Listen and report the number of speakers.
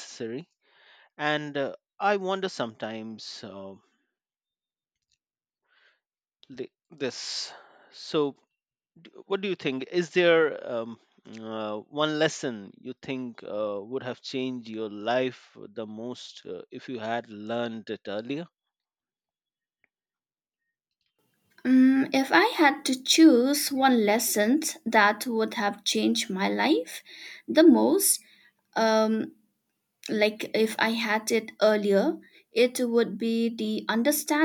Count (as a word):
two